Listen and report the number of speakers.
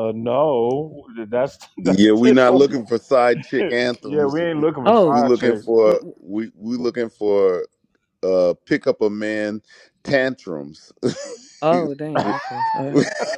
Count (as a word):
three